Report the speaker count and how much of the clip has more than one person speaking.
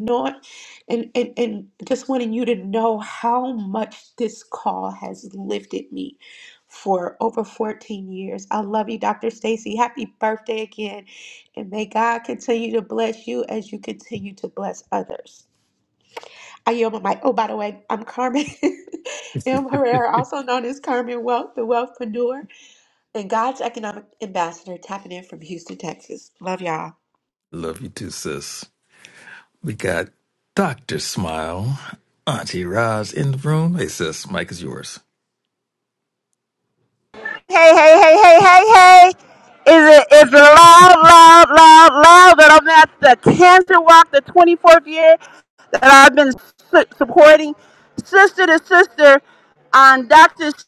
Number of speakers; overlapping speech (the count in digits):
3, no overlap